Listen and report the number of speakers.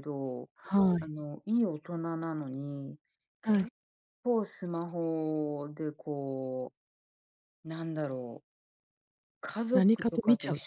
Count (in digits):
2